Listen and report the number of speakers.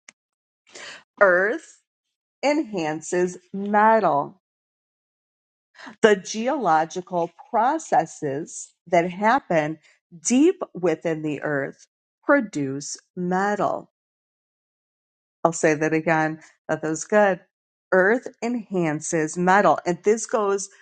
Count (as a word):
one